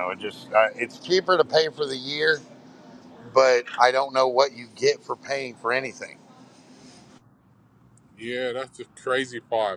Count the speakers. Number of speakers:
two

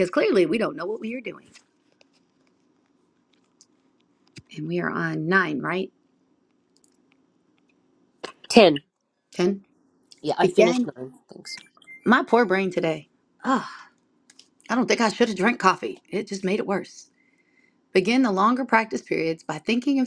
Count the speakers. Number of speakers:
two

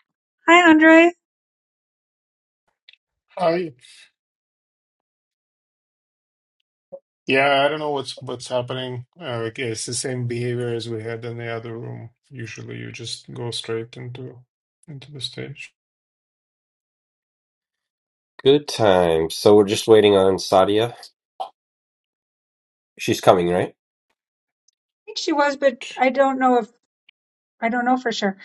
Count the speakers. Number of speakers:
three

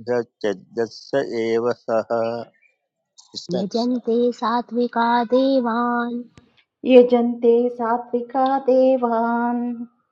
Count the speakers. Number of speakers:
three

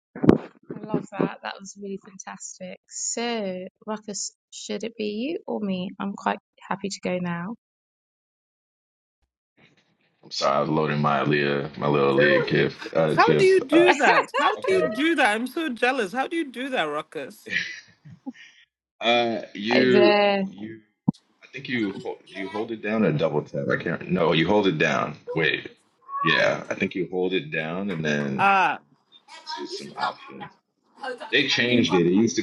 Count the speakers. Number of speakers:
three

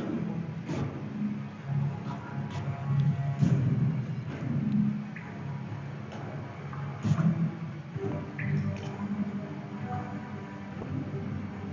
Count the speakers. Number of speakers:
zero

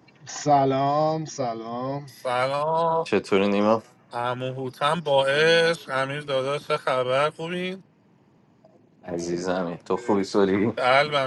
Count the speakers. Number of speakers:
three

